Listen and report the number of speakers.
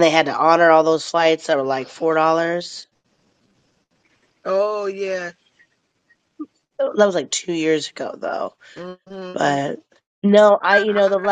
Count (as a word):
two